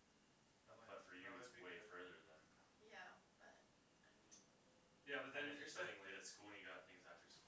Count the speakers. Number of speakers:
3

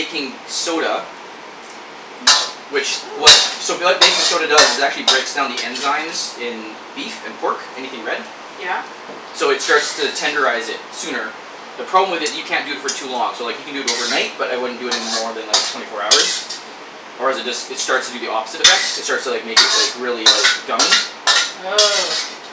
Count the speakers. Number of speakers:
2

